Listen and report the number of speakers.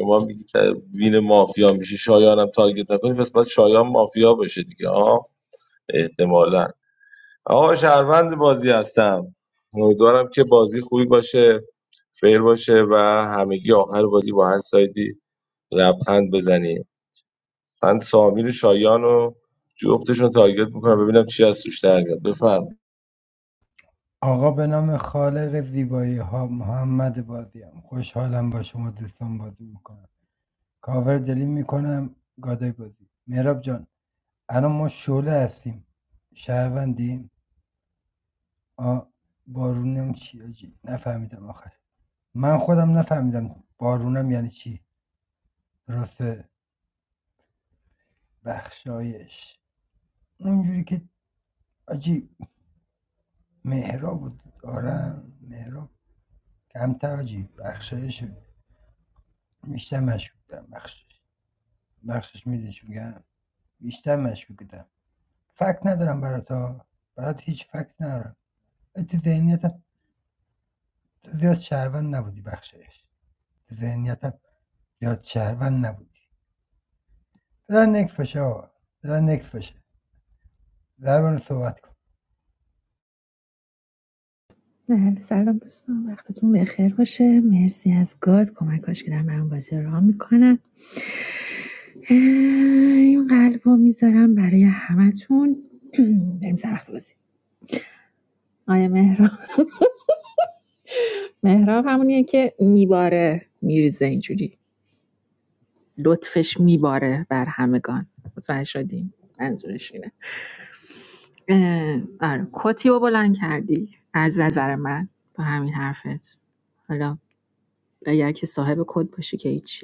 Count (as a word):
three